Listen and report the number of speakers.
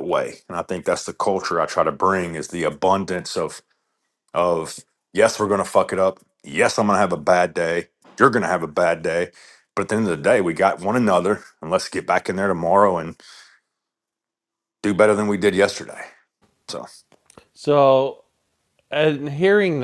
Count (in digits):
2